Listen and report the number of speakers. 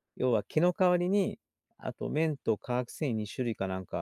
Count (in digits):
1